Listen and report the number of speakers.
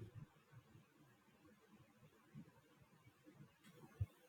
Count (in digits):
0